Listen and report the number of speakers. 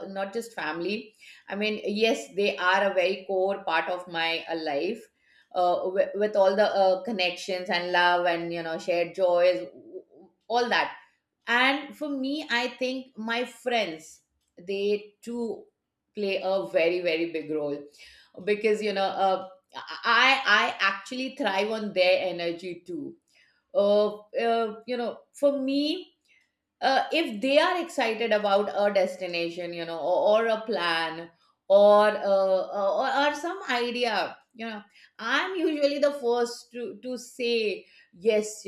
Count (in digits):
1